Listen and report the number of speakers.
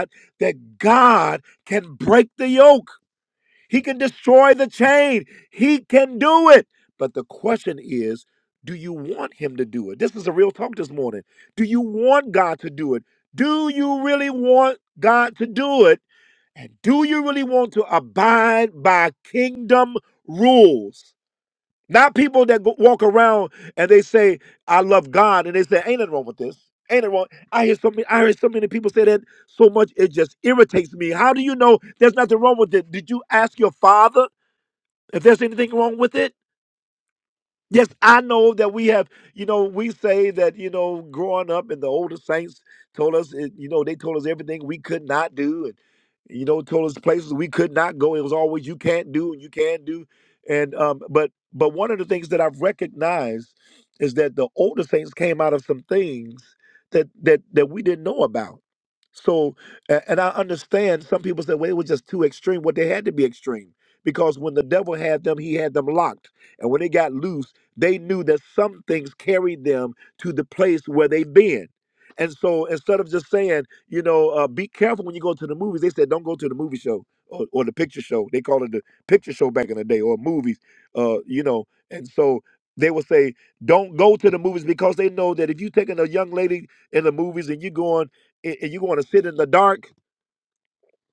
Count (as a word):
one